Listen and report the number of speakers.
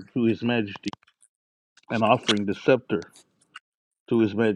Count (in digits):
1